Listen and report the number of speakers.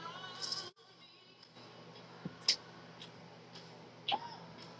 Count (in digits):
0